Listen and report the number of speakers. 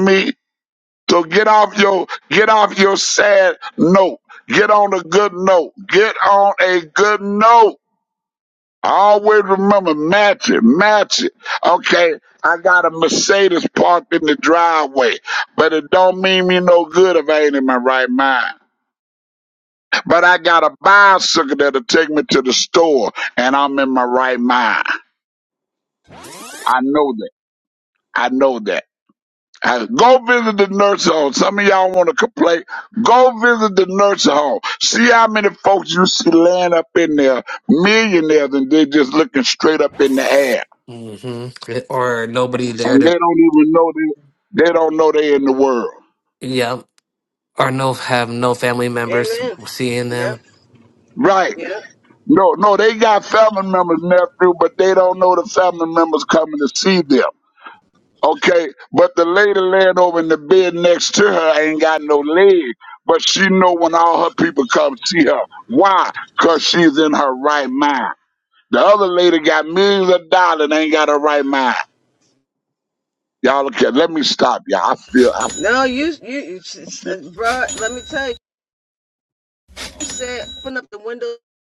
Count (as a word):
three